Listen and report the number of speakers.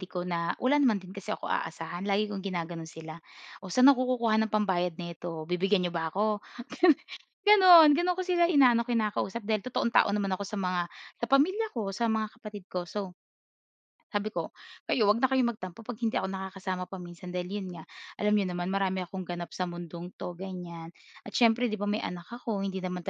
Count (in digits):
1